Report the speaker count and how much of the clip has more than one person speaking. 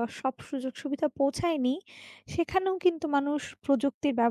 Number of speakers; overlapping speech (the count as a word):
one, no overlap